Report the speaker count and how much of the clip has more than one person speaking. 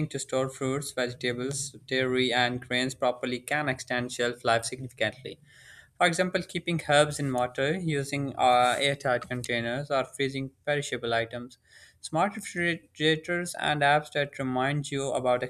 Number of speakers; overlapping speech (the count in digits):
1, no overlap